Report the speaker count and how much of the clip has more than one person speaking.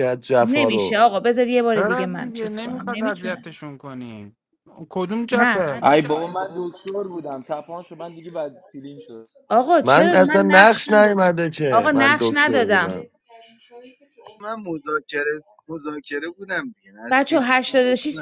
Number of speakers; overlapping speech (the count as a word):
five, about 35%